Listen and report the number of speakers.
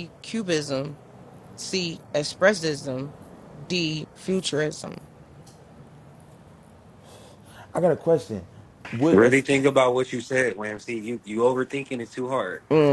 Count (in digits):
3